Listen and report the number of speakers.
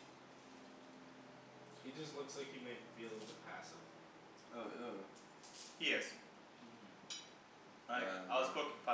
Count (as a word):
three